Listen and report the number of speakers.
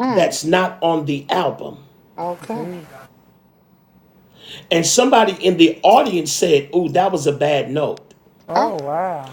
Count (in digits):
3